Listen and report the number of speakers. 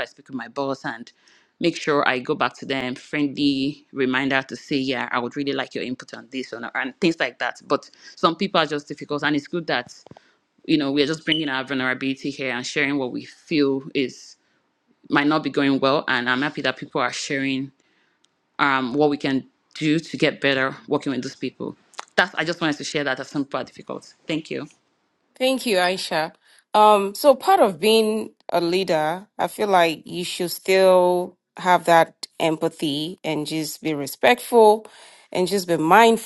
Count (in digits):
2